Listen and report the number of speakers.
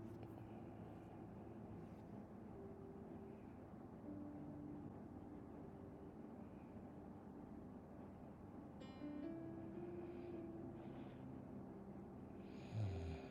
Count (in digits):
0